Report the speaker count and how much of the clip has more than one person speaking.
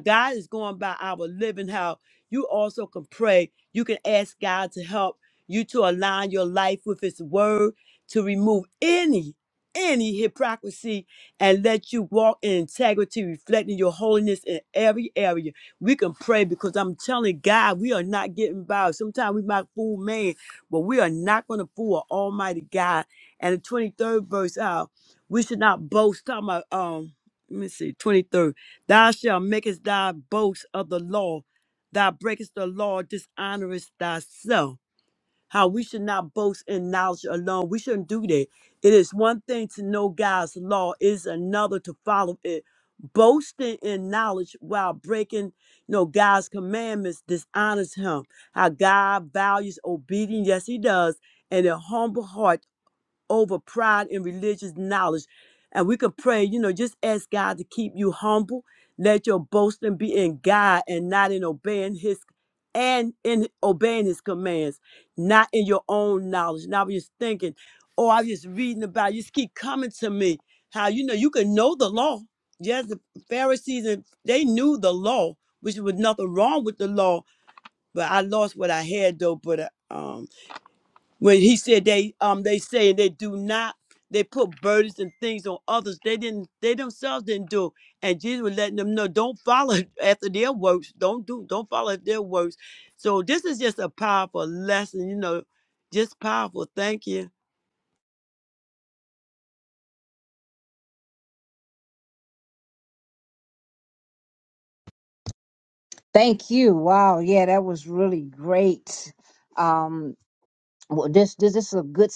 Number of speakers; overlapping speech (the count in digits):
2, no overlap